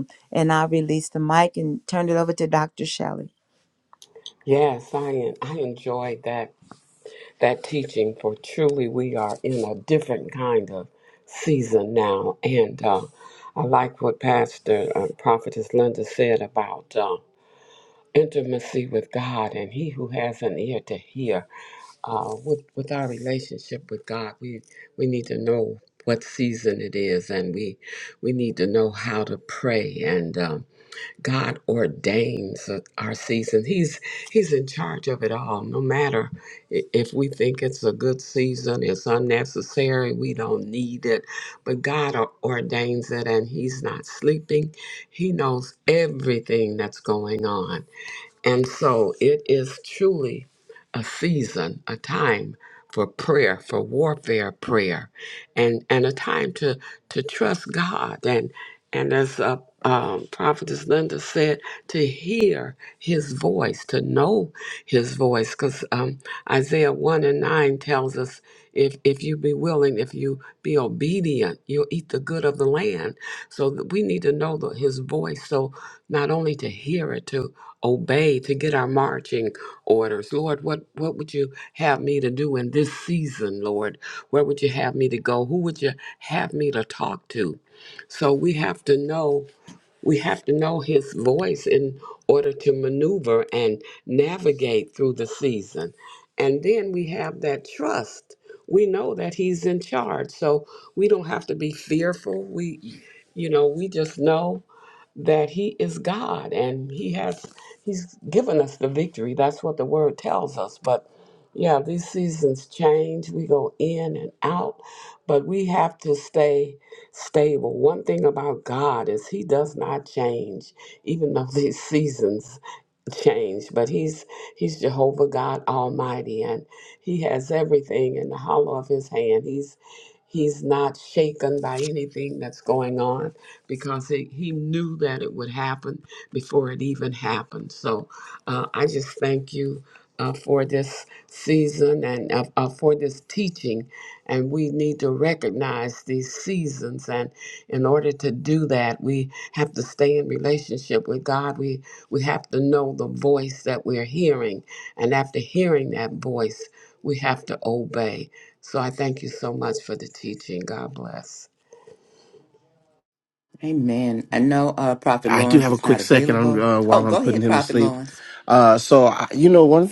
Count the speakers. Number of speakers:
4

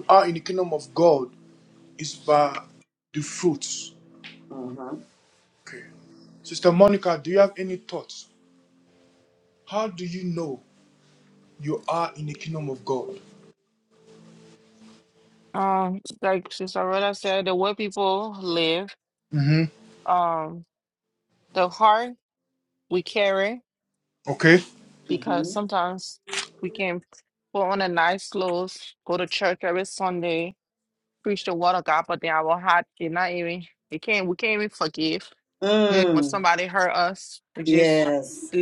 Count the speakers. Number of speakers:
3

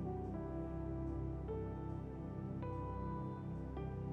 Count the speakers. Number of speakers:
0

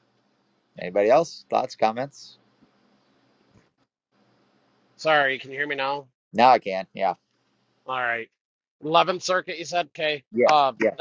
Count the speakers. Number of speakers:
2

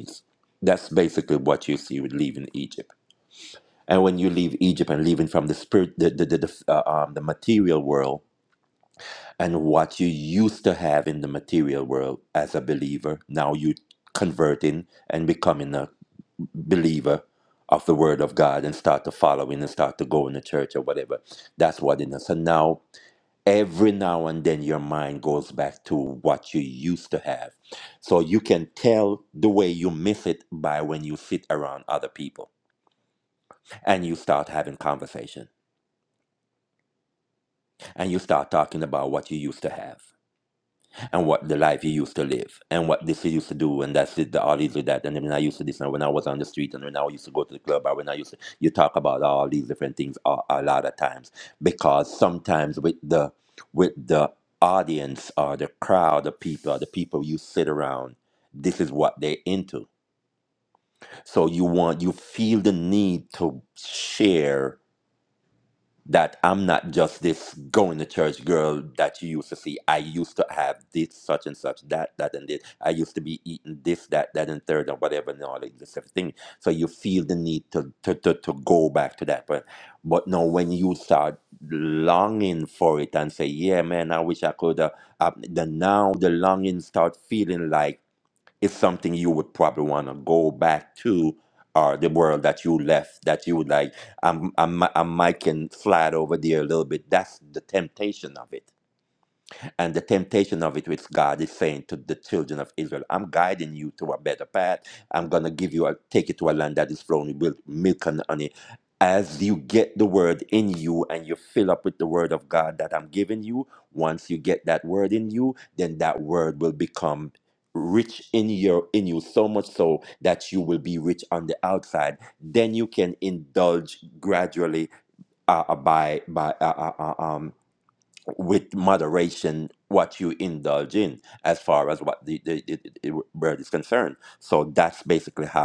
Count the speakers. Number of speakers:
1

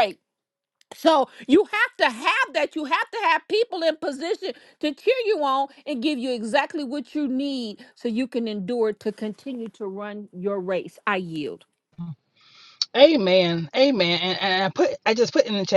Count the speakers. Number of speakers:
2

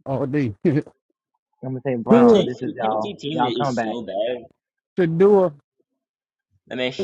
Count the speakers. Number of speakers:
3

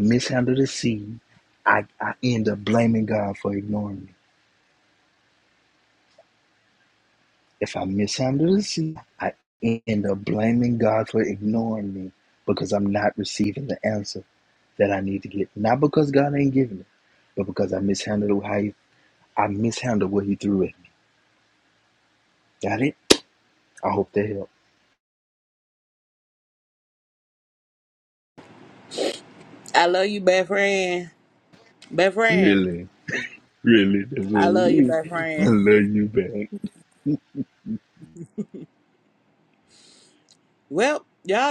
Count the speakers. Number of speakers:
2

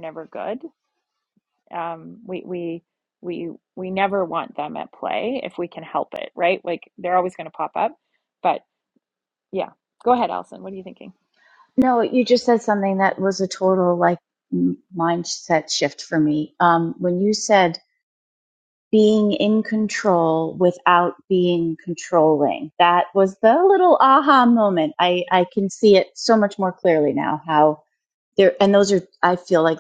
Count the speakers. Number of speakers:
2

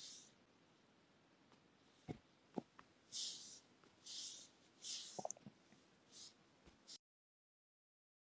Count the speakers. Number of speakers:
0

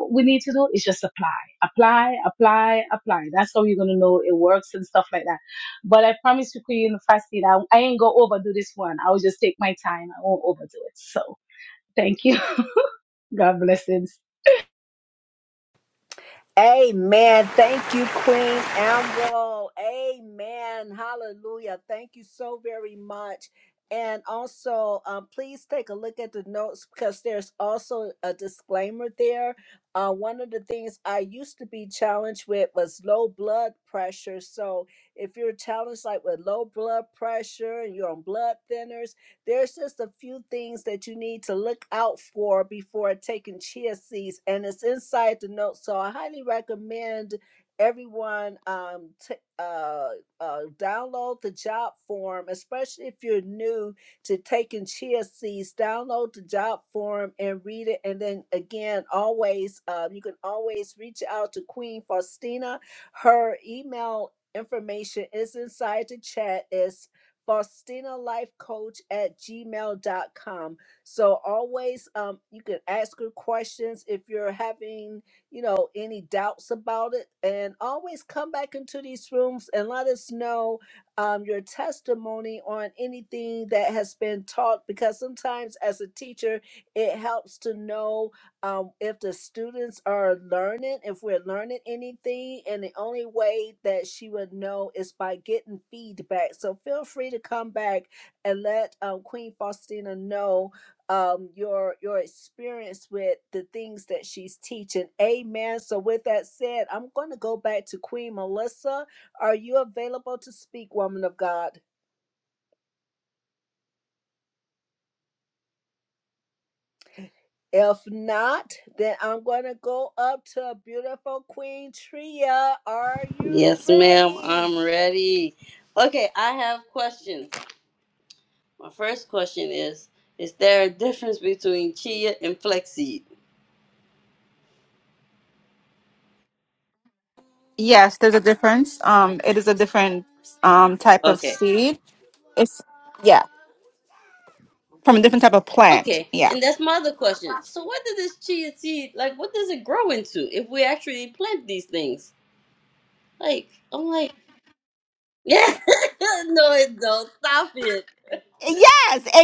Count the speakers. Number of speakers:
4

